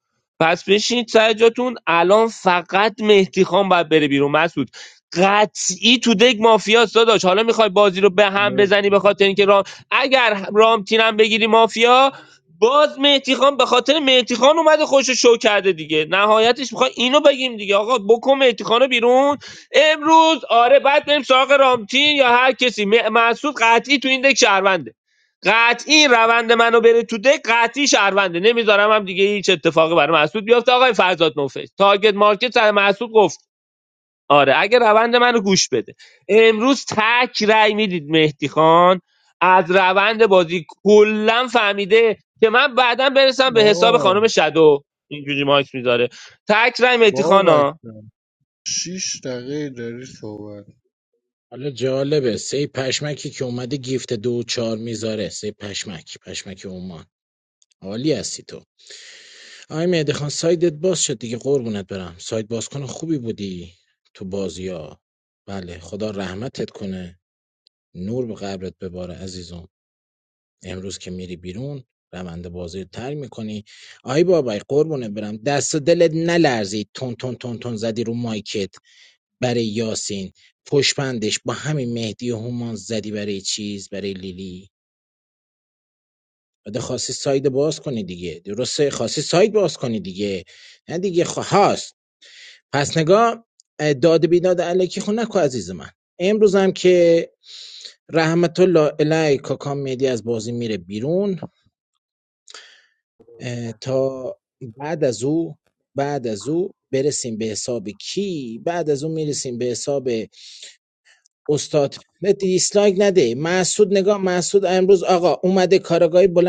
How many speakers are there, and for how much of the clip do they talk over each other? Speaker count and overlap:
3, about 1%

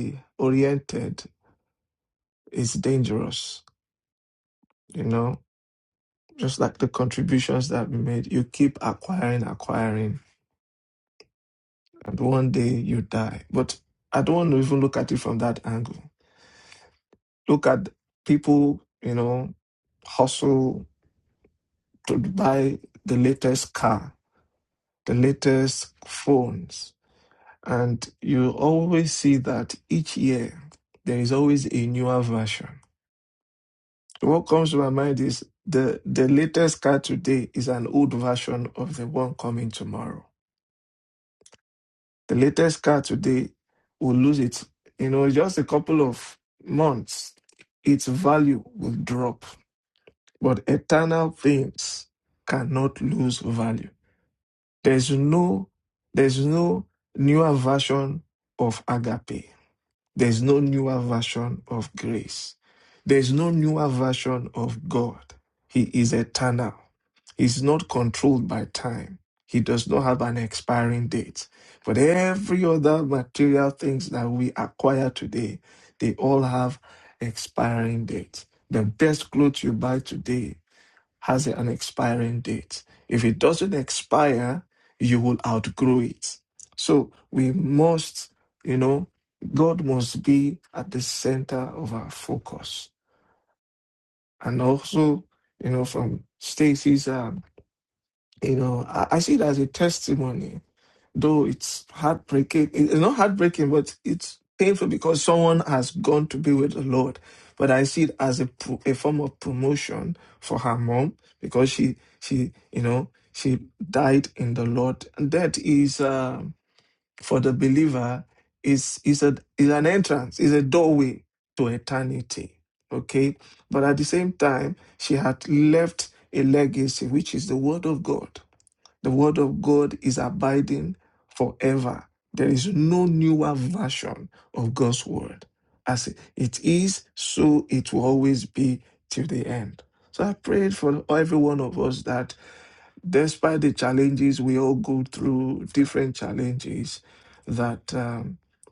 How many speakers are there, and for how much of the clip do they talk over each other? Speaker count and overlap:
1, no overlap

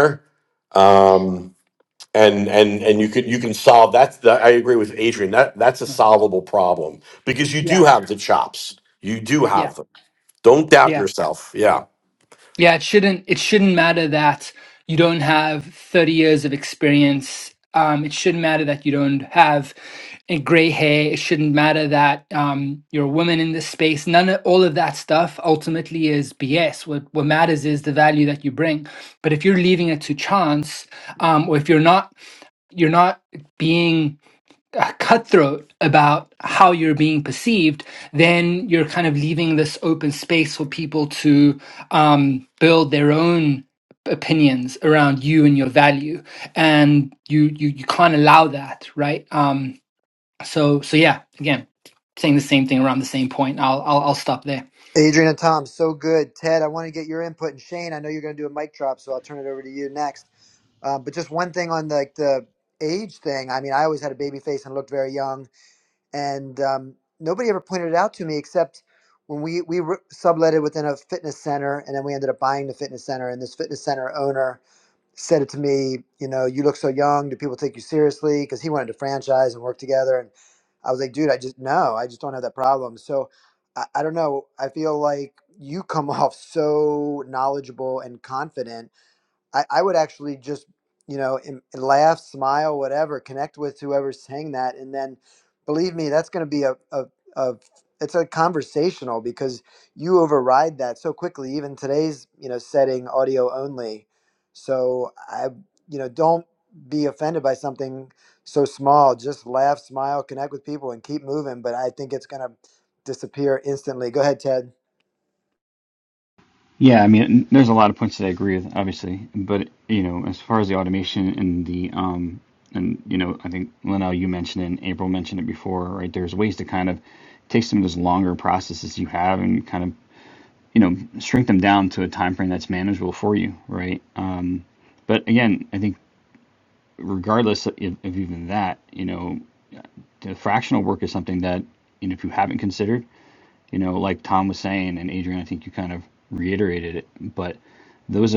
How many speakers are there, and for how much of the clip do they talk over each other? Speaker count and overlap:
4, under 1%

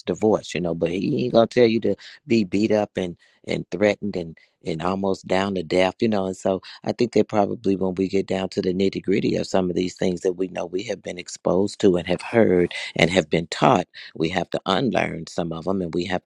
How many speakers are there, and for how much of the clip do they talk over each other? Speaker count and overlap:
1, no overlap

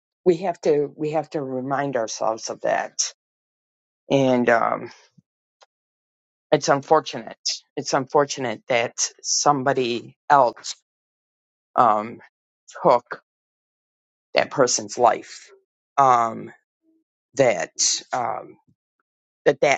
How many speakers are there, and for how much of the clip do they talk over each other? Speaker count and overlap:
1, no overlap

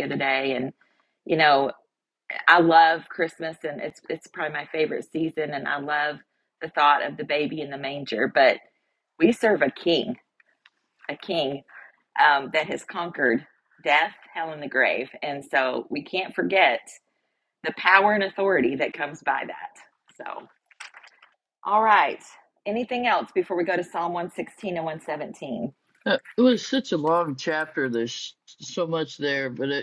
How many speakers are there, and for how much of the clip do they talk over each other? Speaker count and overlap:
2, no overlap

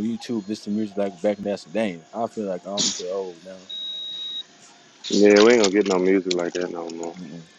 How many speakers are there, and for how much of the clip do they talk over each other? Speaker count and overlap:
2, no overlap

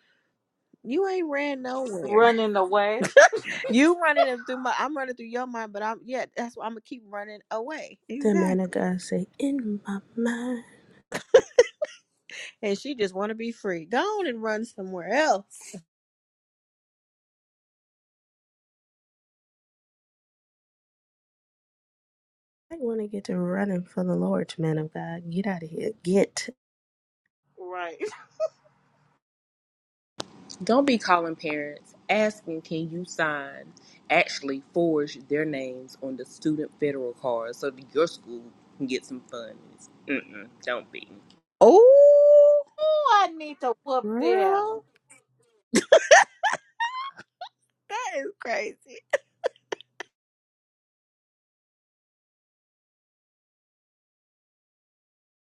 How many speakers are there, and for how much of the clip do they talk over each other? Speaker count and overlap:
4, about 3%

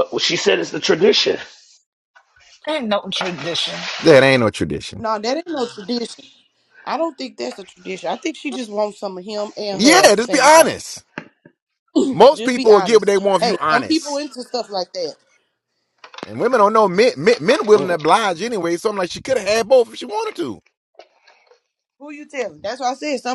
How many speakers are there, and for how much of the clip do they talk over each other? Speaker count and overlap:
4, about 11%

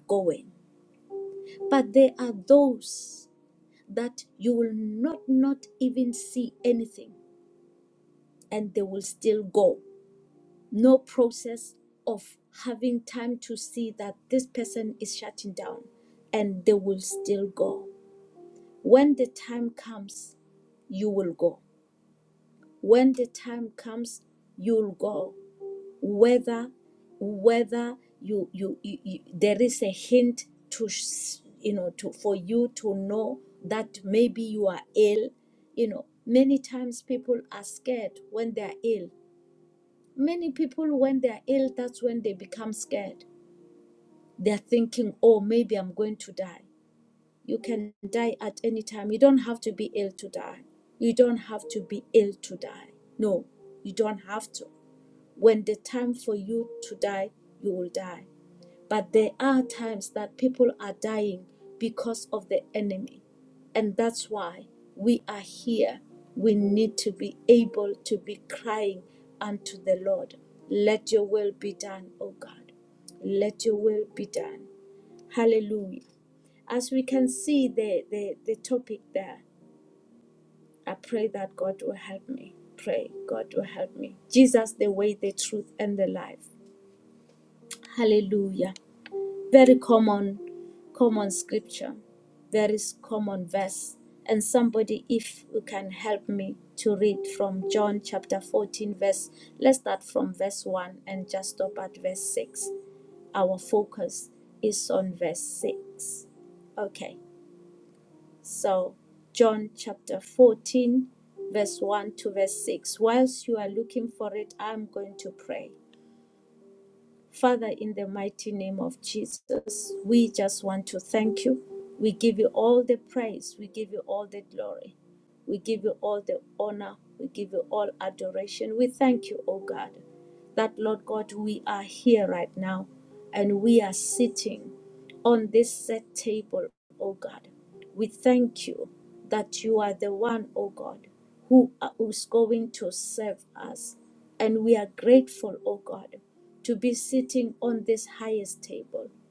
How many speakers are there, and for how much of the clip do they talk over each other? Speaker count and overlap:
1, no overlap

